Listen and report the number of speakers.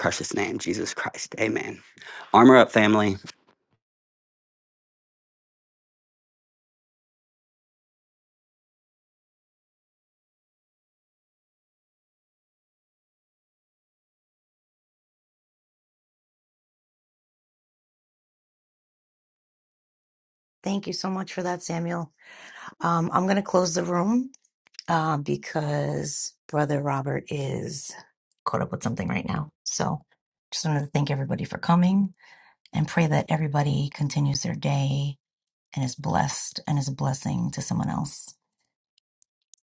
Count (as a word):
two